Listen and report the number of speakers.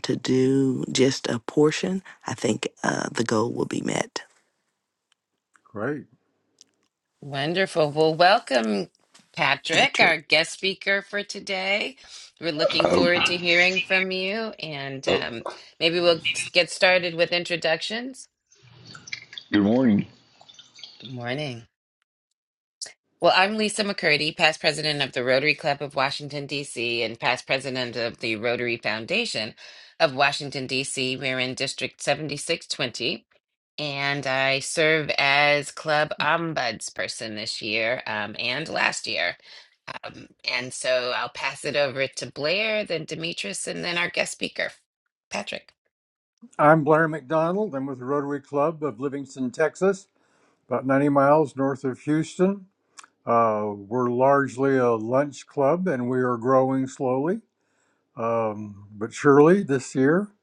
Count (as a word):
four